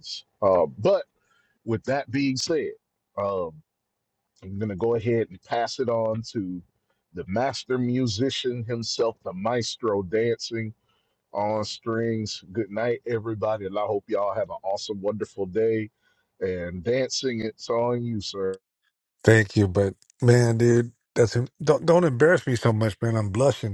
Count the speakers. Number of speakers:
2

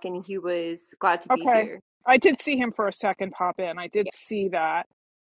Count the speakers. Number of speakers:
2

